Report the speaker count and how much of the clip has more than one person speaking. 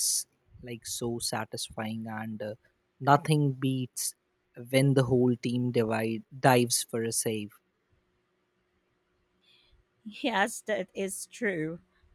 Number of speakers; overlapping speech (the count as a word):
two, no overlap